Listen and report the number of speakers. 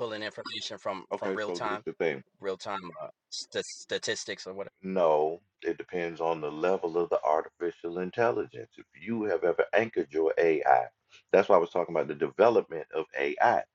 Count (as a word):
two